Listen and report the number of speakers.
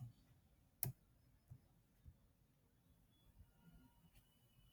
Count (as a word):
zero